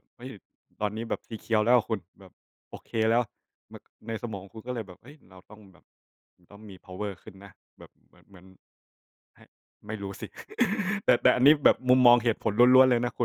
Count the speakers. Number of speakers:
1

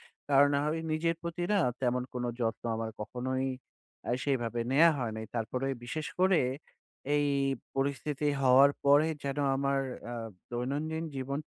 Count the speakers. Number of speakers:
1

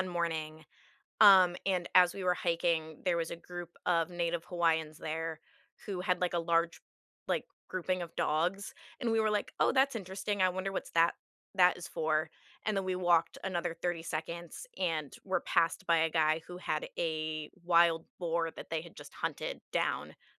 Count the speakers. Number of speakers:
1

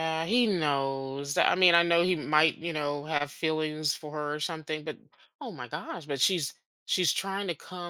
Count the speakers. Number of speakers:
1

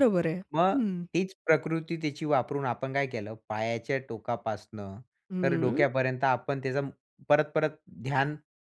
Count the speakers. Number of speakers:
2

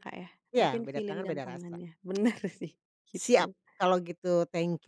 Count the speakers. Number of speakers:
2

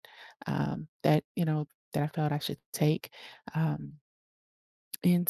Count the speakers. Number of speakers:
1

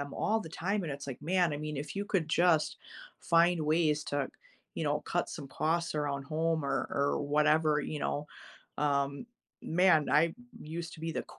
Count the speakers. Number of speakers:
1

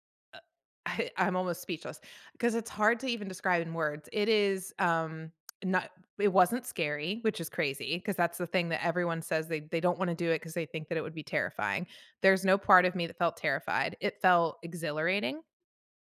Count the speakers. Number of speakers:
1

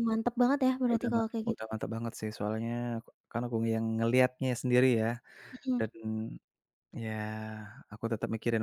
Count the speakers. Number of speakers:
2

